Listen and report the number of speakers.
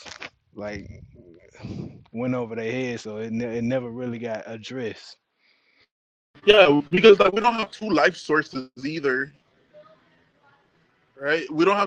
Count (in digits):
2